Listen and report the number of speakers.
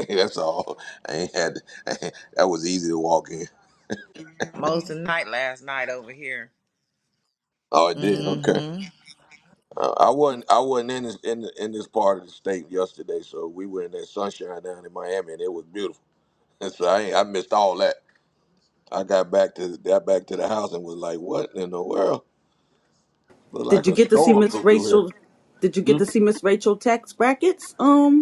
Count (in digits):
3